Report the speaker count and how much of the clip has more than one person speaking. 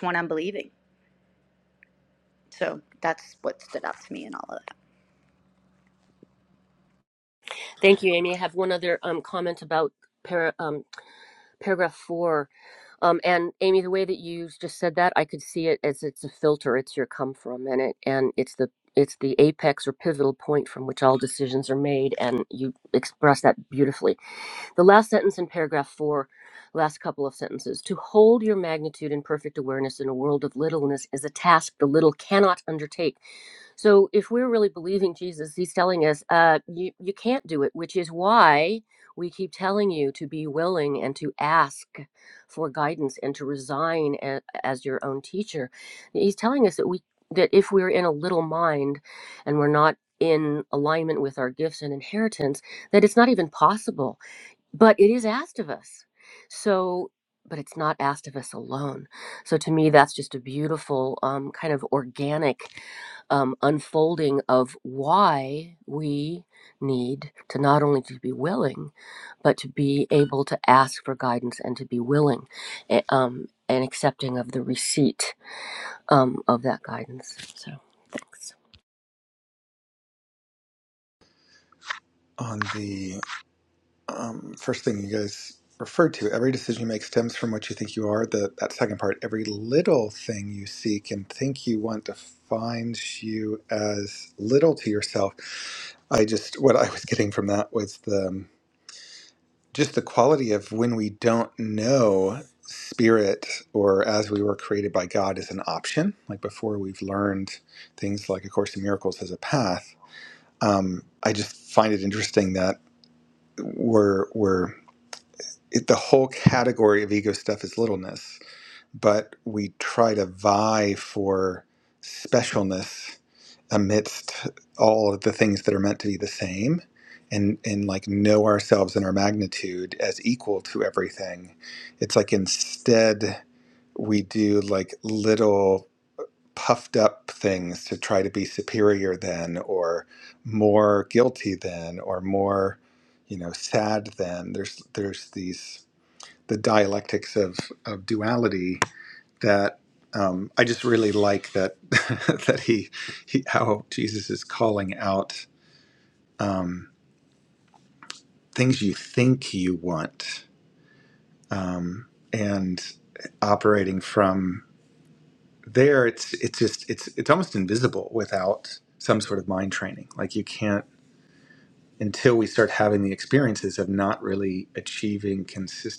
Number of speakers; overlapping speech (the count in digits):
3, no overlap